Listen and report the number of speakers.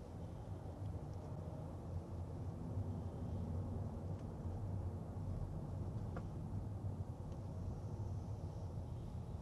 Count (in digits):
0